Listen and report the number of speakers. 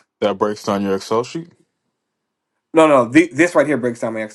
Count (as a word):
two